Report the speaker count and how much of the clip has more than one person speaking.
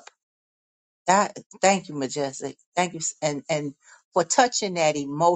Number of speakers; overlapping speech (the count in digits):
1, no overlap